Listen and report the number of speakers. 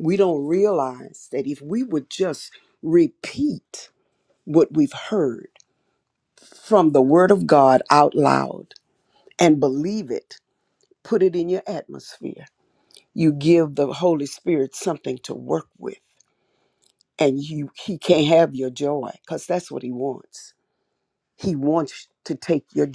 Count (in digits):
1